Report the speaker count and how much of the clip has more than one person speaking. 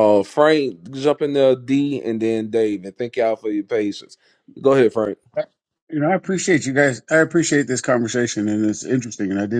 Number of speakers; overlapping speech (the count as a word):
two, no overlap